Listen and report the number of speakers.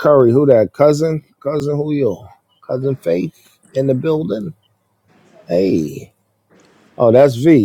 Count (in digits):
1